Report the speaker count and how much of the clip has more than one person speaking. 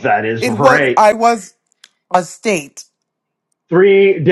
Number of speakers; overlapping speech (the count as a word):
two, about 13%